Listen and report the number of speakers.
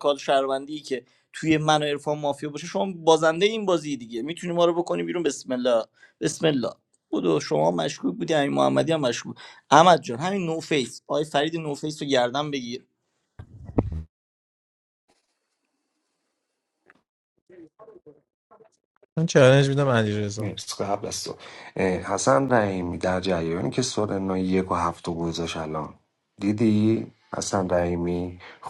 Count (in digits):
3